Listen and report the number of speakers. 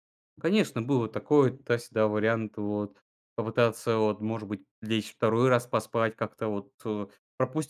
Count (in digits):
1